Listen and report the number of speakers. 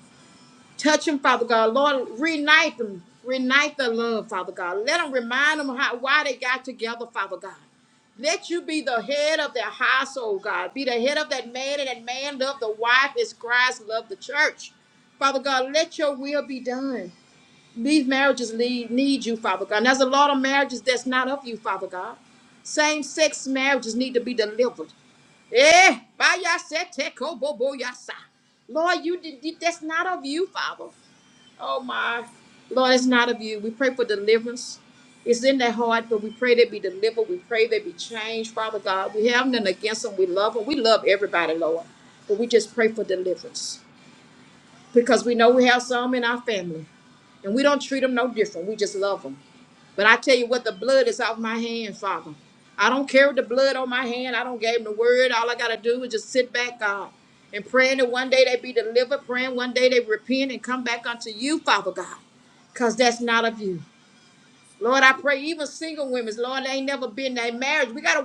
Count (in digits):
1